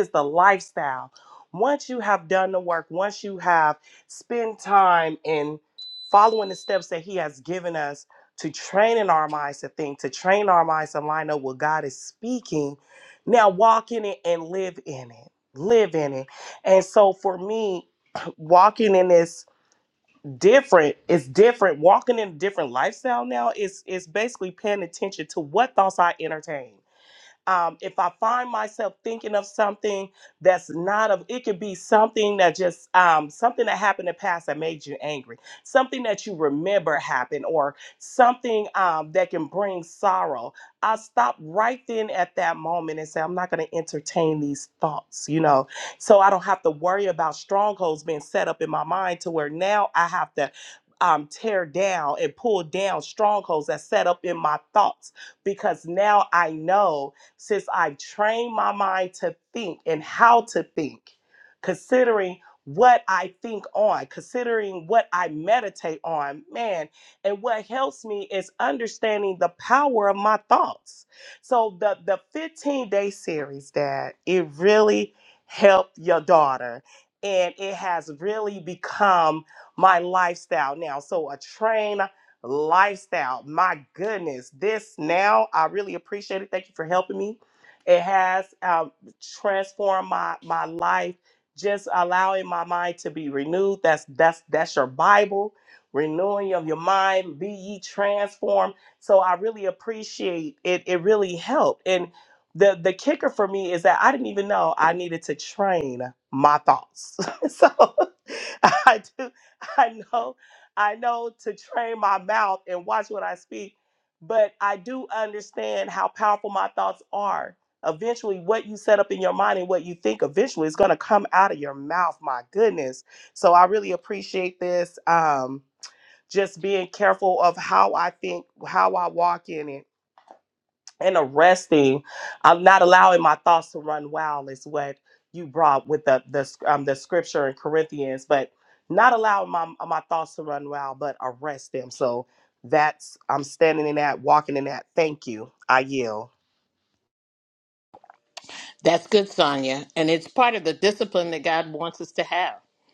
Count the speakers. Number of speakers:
2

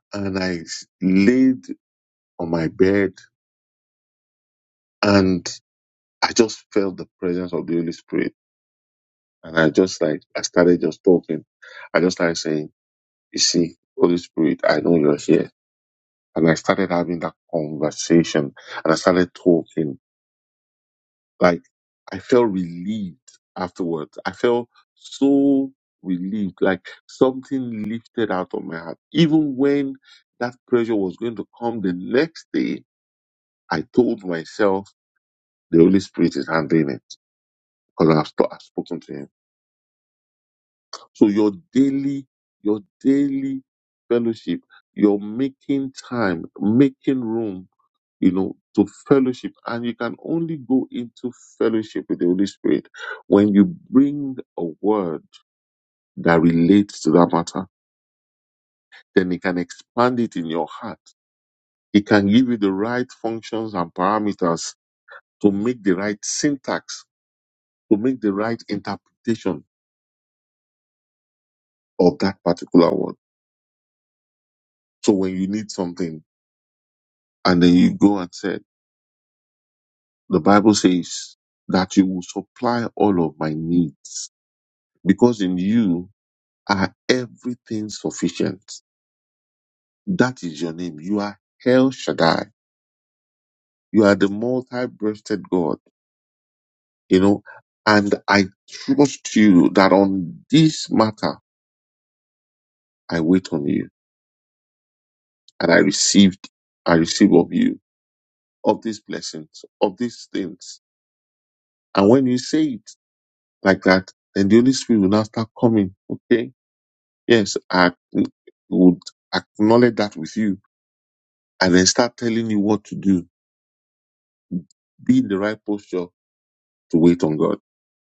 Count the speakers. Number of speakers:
1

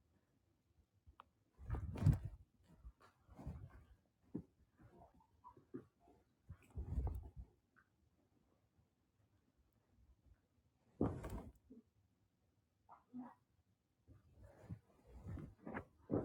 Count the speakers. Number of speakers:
0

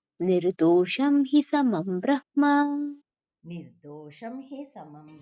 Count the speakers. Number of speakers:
2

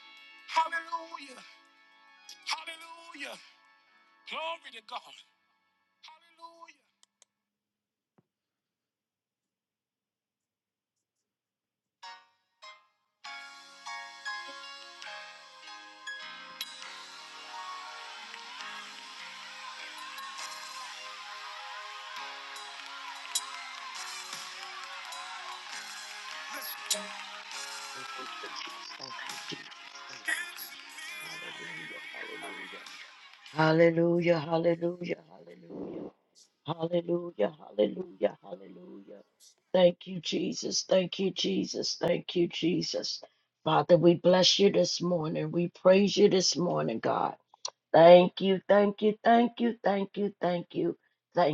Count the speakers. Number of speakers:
2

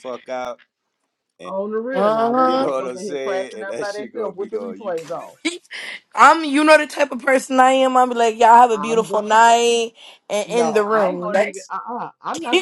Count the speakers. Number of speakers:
3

